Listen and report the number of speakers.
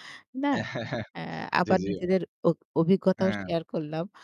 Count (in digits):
2